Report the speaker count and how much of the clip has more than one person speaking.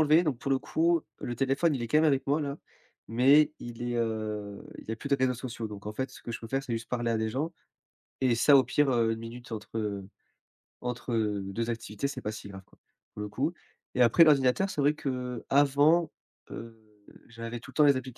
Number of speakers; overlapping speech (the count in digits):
1, no overlap